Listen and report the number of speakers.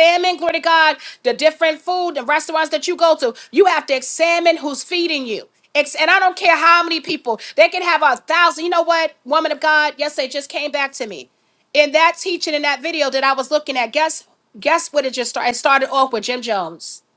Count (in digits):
1